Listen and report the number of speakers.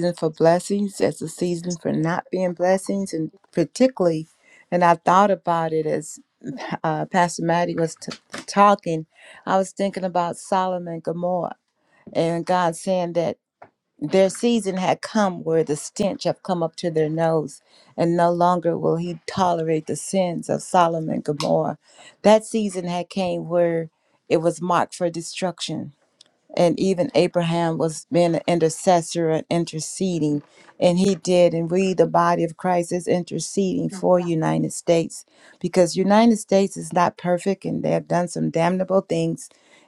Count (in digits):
1